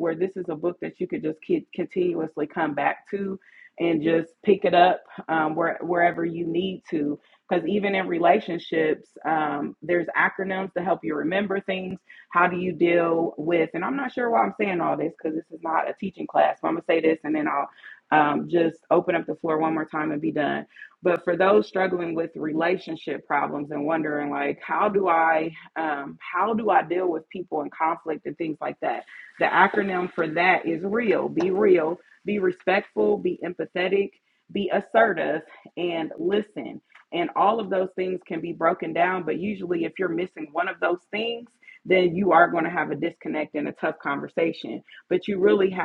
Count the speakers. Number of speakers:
1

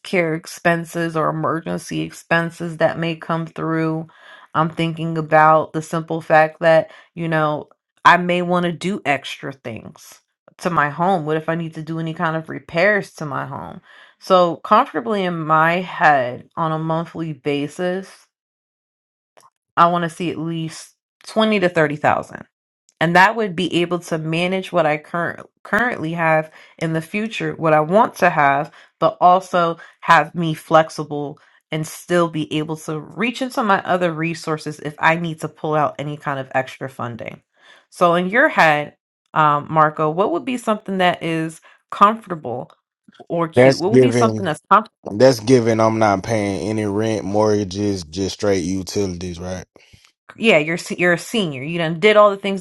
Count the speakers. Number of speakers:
2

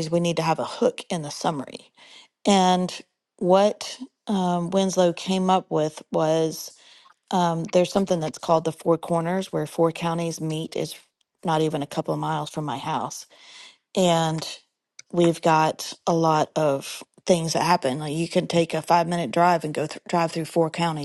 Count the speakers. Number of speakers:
1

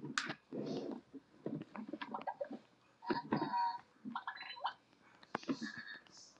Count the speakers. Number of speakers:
0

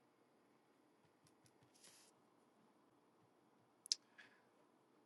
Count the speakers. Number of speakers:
0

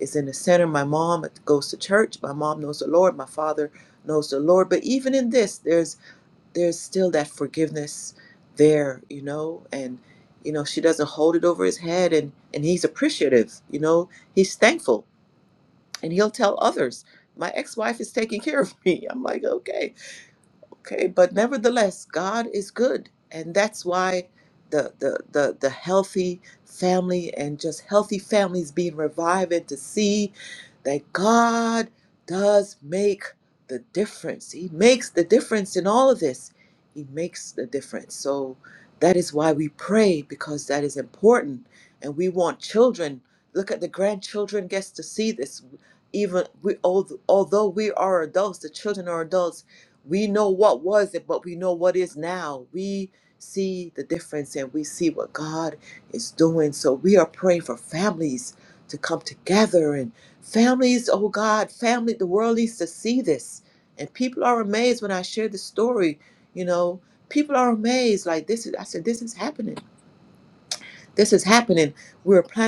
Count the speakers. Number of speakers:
1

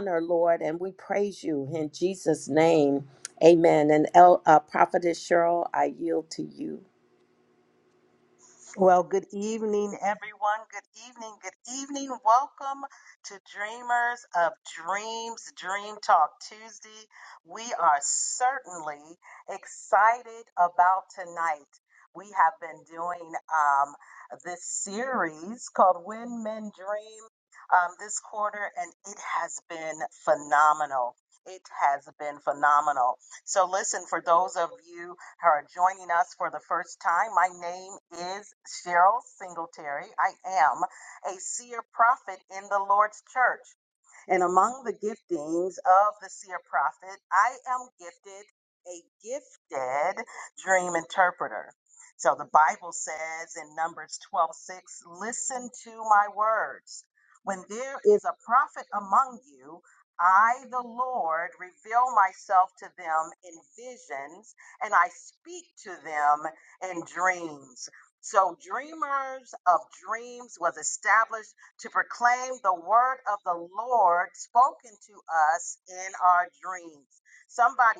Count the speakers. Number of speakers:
2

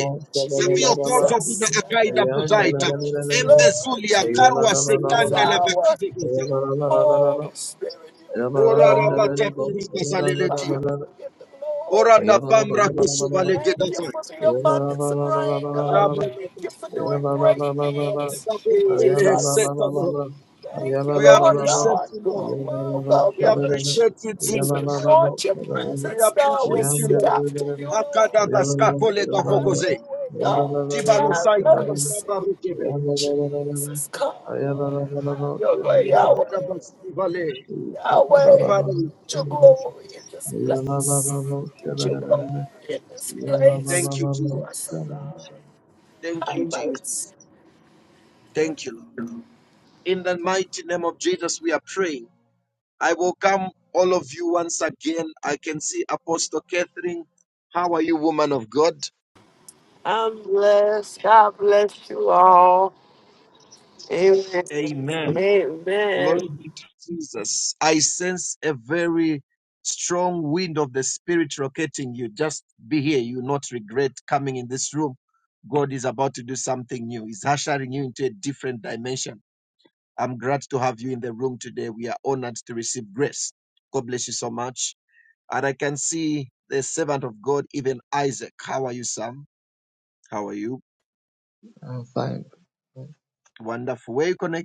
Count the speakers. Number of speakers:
3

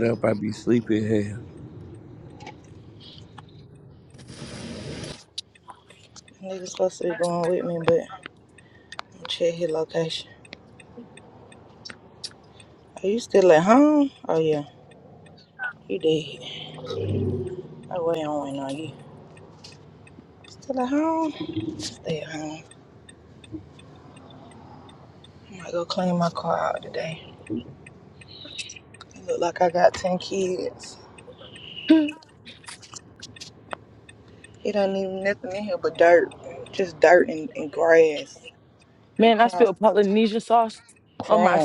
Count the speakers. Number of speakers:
3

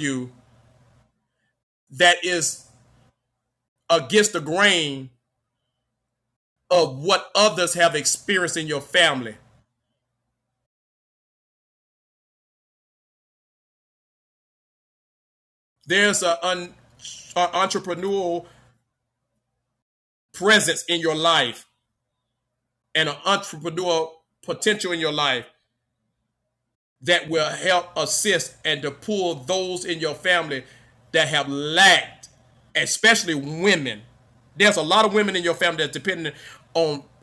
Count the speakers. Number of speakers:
1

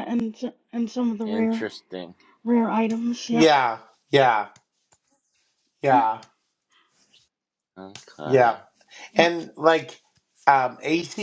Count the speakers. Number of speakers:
3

